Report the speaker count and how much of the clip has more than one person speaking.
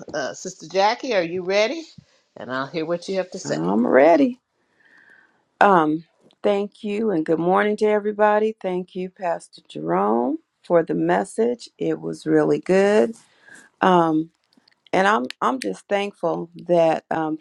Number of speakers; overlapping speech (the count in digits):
2, about 1%